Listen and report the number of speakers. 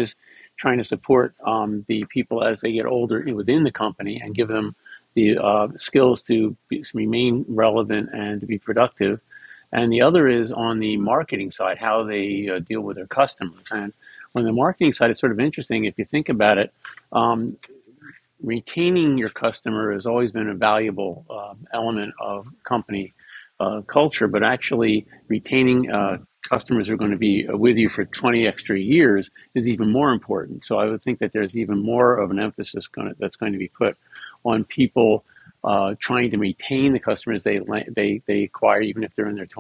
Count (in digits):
1